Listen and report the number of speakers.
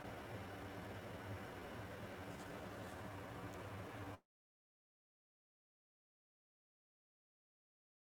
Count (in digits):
0